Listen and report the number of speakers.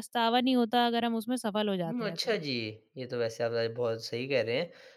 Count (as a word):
two